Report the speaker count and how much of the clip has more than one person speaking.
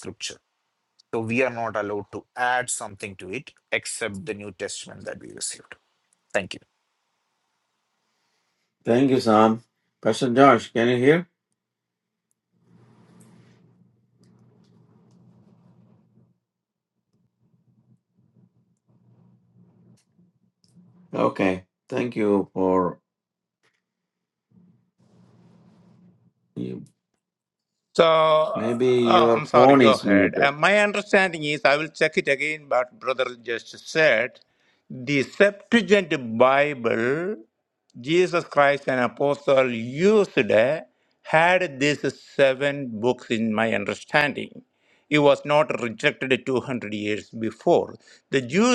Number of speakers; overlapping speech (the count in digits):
3, about 3%